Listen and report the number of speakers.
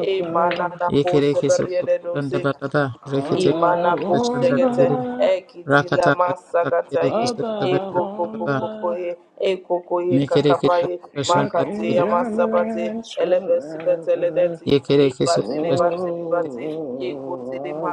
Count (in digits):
3